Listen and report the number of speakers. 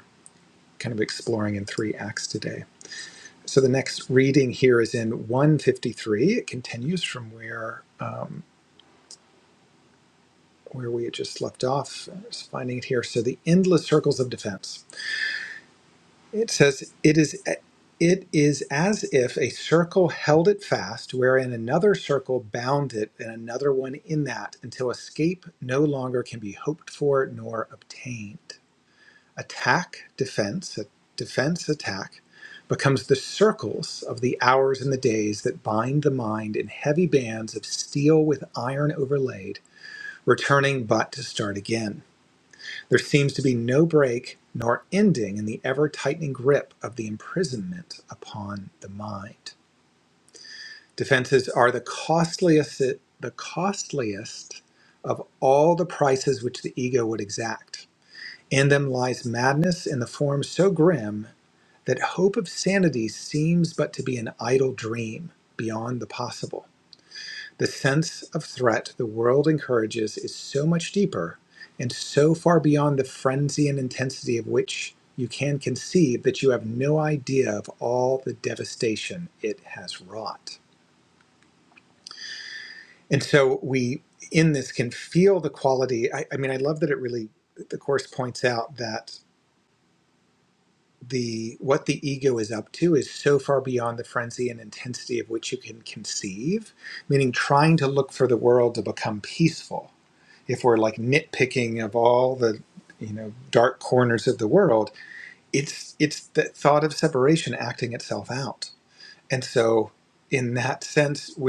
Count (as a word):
one